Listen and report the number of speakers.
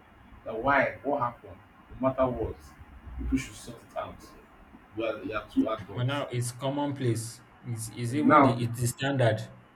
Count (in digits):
2